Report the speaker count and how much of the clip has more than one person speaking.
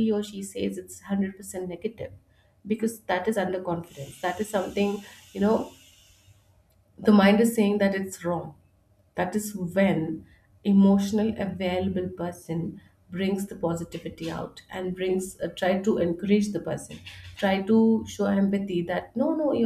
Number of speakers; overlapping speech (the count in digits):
1, no overlap